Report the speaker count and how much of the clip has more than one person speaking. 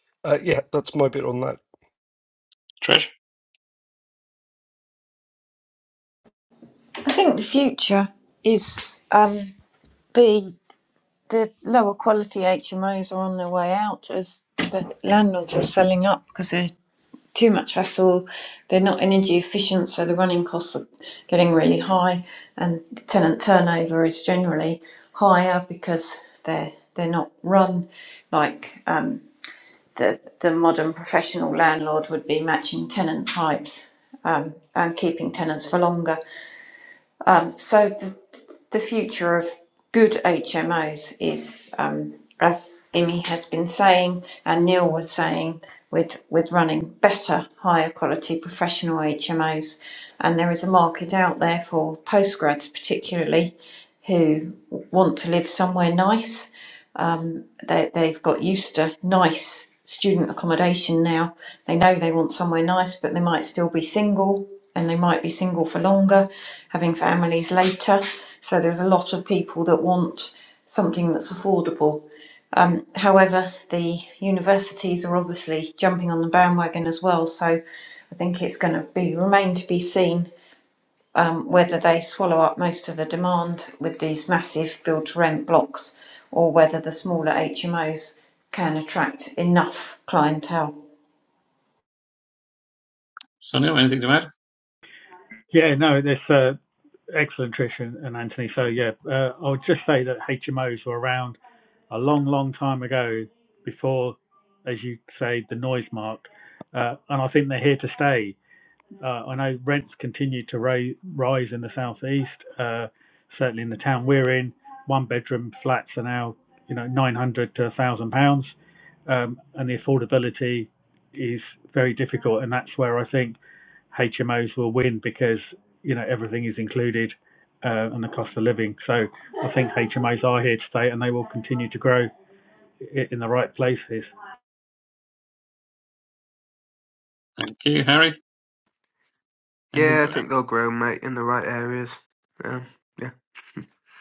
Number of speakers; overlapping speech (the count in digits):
5, under 1%